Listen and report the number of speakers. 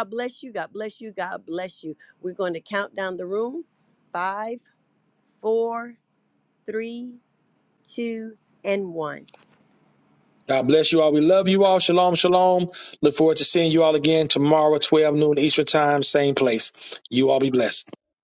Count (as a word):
two